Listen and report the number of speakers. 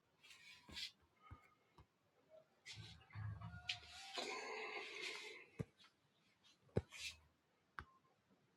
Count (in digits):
0